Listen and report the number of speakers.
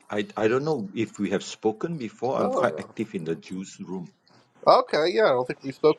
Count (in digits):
2